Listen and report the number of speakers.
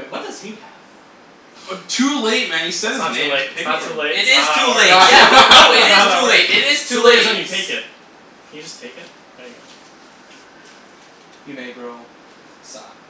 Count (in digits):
4